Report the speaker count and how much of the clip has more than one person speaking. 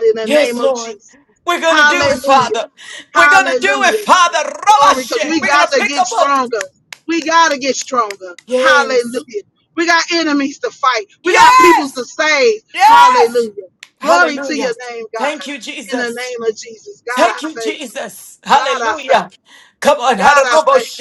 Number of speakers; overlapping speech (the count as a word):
two, about 42%